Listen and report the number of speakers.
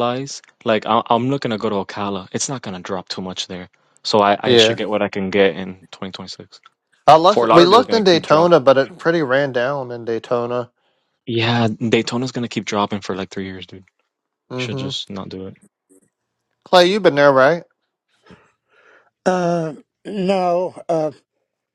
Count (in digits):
3